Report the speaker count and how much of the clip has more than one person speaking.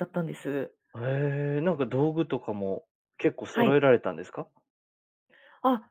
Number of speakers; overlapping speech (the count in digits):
2, about 4%